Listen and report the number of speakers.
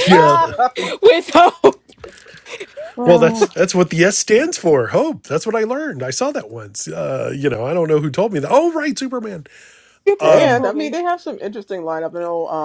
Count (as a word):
three